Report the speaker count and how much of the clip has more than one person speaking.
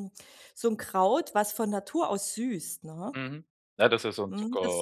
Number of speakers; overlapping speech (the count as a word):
two, about 11%